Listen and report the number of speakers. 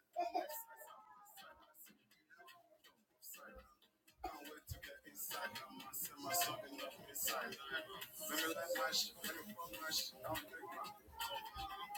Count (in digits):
0